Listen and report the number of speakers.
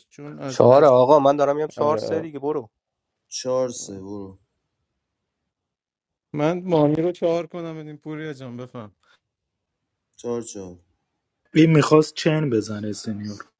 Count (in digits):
4